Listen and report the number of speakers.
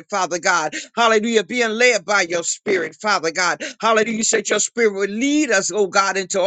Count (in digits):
1